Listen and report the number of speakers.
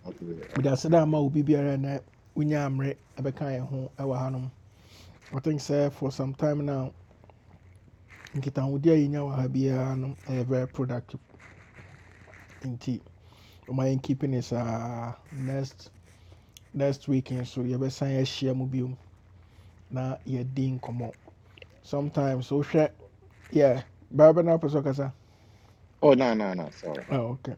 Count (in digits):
2